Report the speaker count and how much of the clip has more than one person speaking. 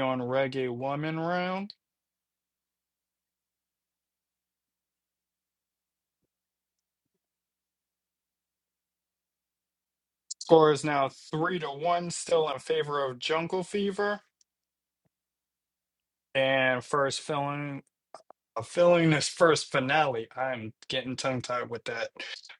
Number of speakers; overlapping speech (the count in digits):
1, no overlap